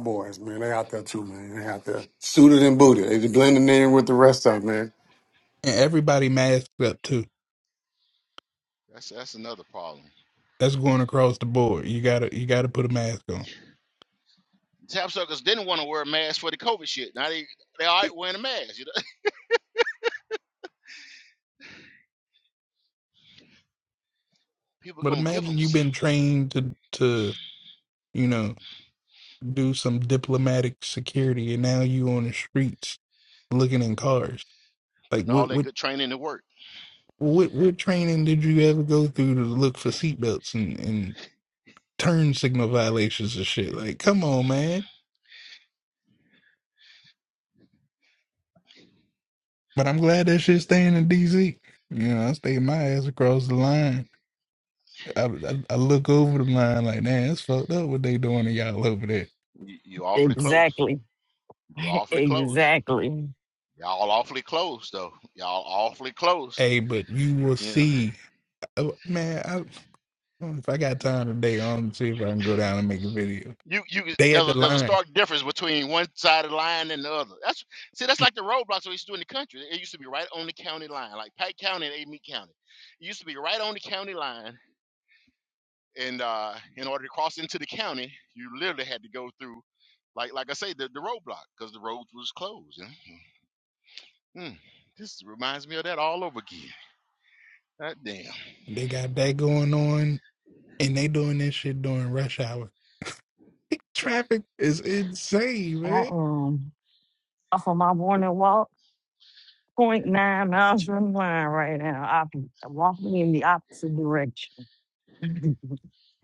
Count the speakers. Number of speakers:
4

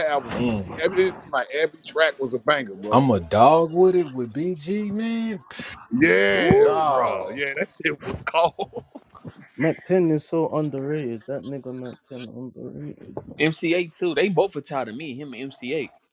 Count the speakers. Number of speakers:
4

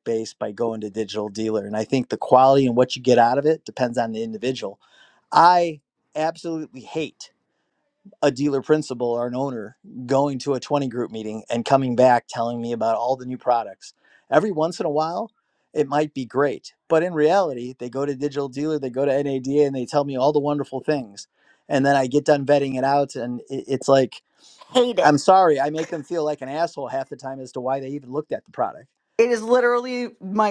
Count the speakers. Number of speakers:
2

